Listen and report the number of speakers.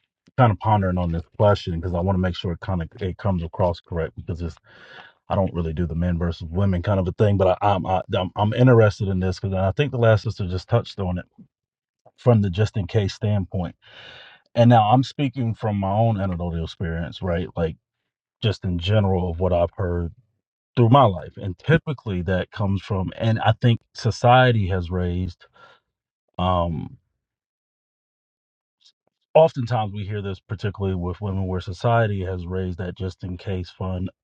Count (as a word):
one